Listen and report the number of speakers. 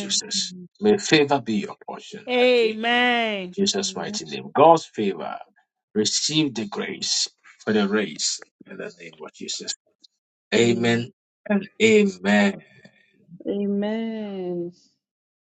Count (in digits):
3